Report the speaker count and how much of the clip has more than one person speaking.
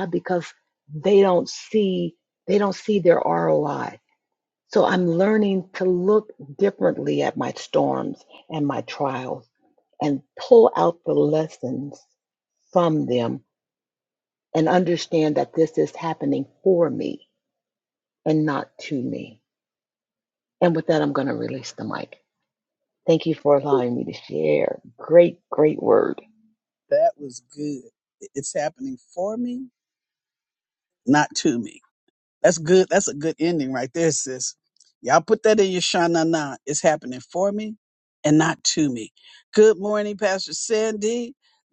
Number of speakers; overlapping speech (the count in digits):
2, no overlap